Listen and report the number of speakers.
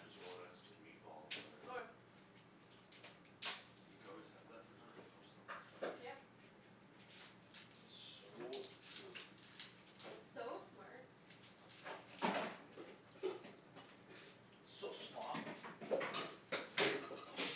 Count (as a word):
three